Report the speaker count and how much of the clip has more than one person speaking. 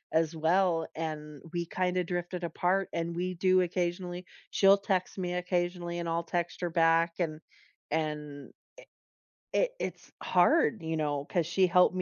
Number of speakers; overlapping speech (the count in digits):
1, no overlap